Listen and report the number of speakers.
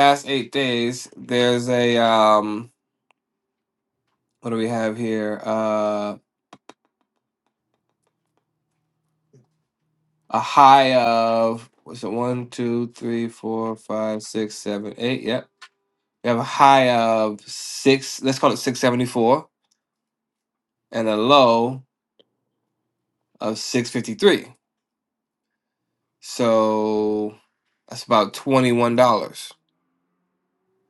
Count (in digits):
1